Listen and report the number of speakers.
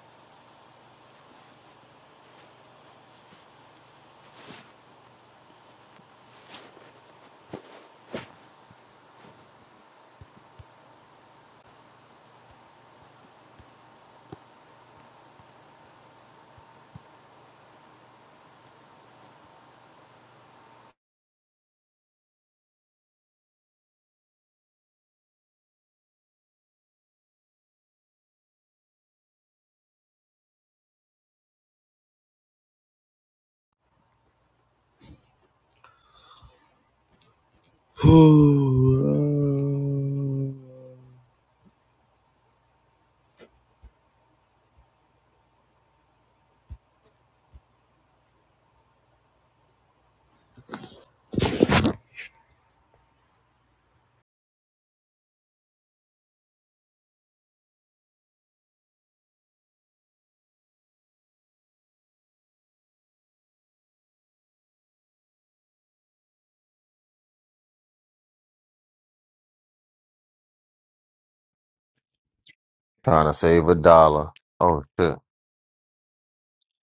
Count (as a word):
two